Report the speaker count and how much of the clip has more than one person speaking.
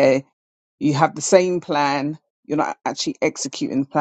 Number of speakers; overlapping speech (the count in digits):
1, no overlap